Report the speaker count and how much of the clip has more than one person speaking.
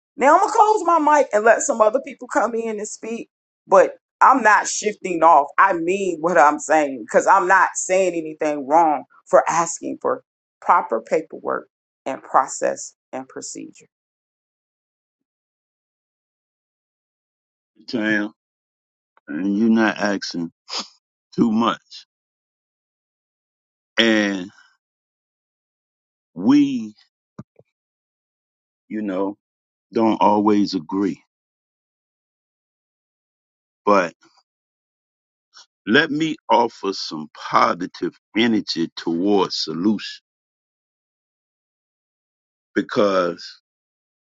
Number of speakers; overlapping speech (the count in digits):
2, no overlap